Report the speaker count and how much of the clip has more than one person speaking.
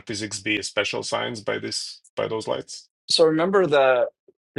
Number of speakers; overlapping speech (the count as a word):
two, no overlap